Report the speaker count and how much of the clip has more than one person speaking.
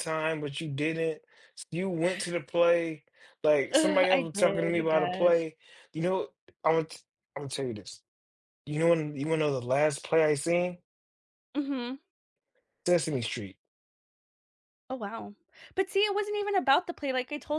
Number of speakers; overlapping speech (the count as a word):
two, about 9%